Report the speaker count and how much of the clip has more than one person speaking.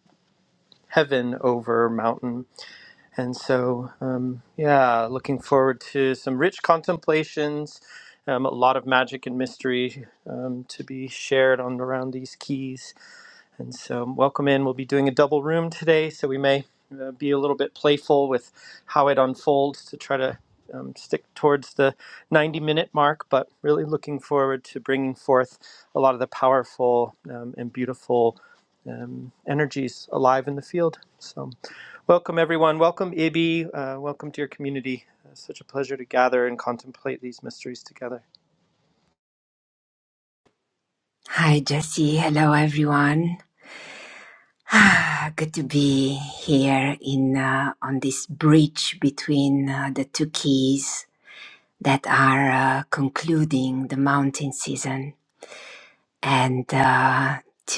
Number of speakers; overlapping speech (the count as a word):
two, no overlap